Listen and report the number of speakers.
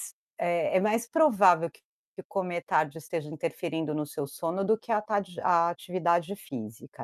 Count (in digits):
1